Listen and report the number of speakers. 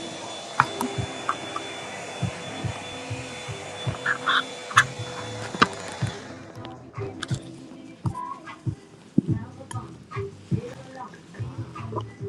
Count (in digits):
0